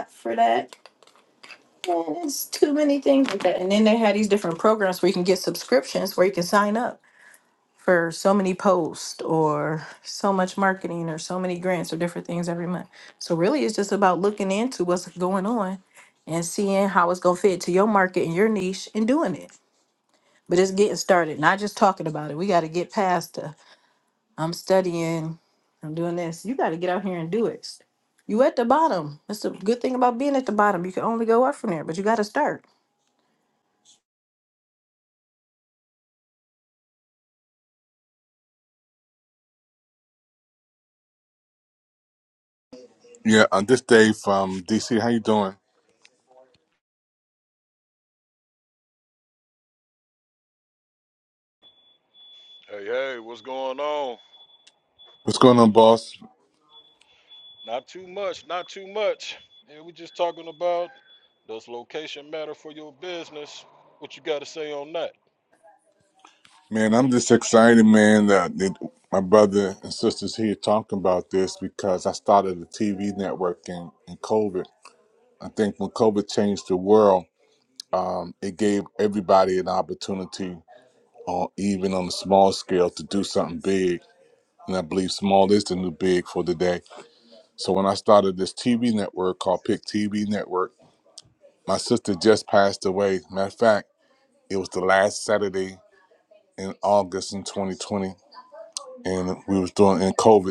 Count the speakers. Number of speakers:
three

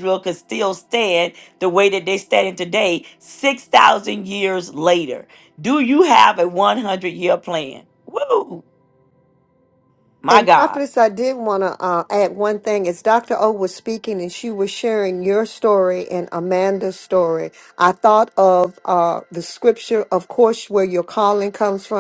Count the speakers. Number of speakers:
two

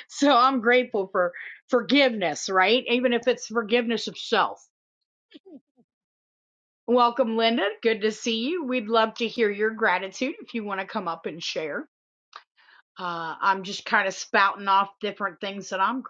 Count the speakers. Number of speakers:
one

